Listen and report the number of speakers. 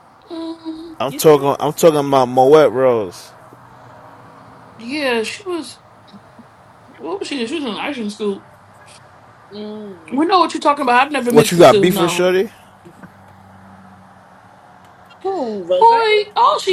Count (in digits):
3